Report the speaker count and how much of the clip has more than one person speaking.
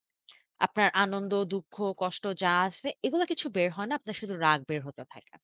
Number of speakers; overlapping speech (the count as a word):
one, no overlap